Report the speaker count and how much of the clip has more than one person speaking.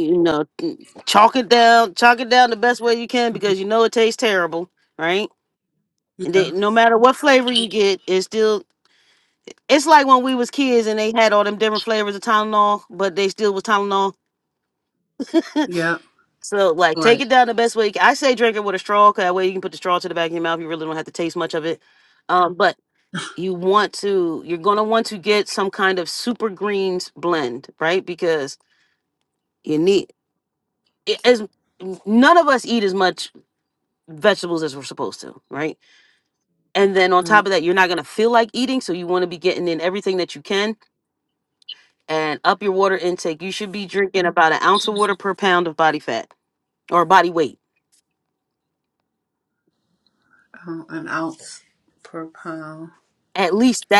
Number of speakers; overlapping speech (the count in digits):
2, about 2%